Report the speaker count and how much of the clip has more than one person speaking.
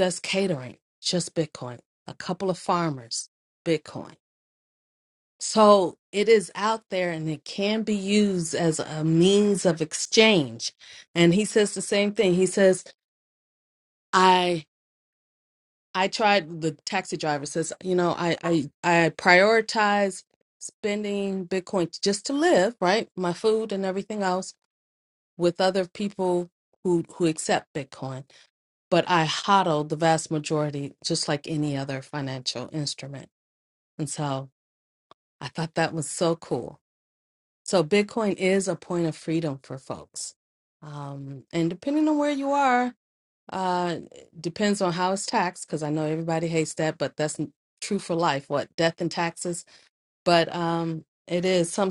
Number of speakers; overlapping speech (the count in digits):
1, no overlap